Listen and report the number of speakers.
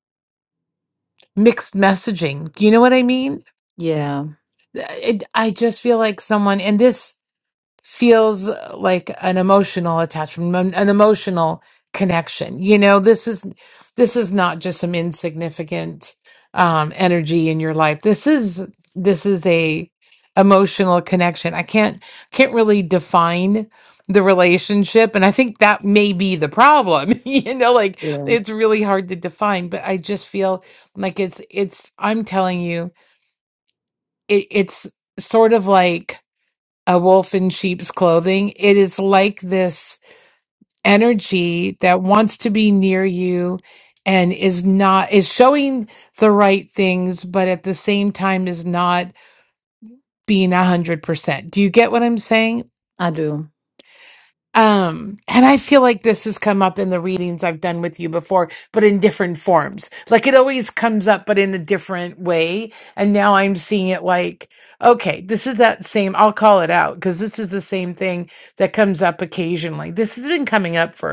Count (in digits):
2